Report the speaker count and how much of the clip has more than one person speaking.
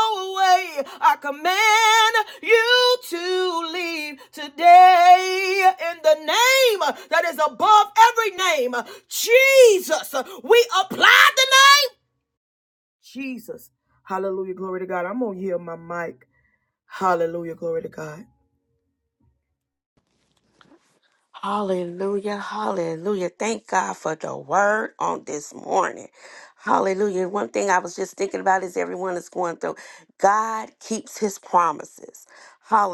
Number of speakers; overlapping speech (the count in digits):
2, no overlap